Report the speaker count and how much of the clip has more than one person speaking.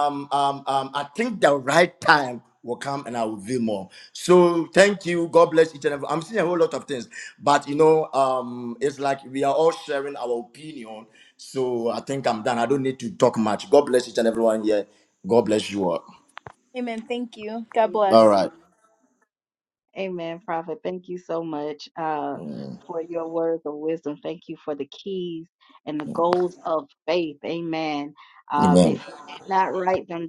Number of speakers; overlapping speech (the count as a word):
three, about 4%